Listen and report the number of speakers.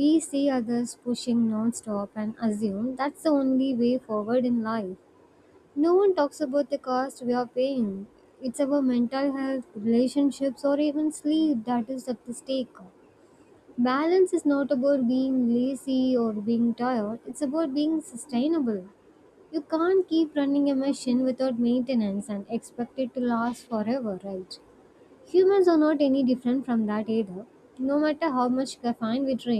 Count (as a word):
one